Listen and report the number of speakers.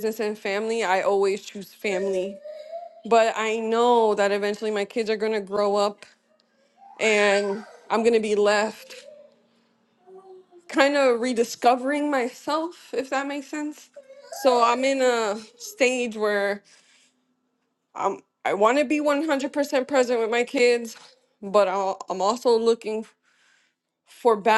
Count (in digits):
1